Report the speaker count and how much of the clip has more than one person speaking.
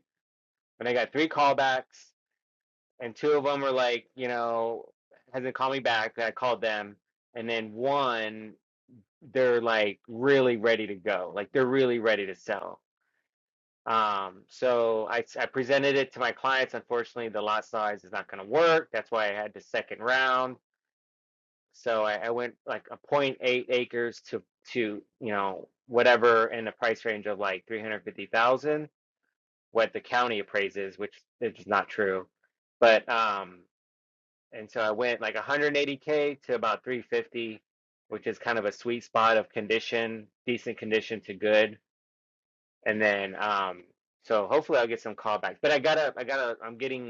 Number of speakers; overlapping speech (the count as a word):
one, no overlap